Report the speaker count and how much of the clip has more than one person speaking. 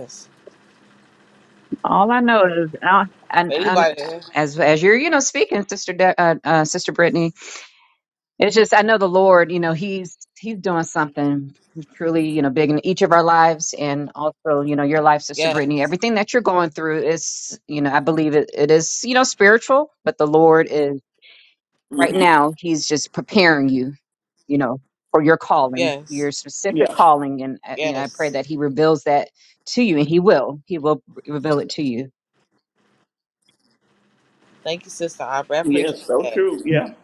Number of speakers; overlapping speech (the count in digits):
3, about 7%